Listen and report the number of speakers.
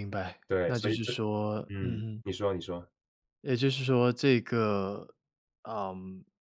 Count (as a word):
two